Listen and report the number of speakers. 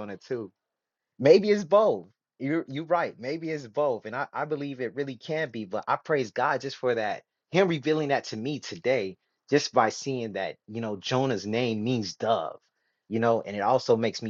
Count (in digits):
1